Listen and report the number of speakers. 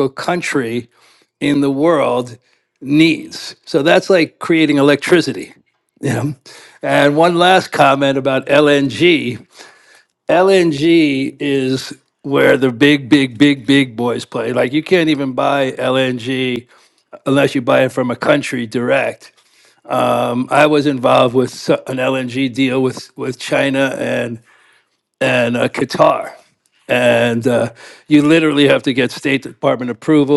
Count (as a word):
one